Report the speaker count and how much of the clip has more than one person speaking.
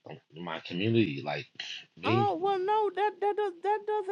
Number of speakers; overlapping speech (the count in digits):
2, about 6%